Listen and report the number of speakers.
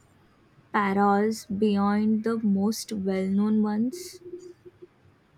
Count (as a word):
one